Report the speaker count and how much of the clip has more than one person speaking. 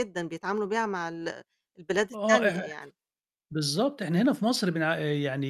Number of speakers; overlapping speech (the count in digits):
2, about 10%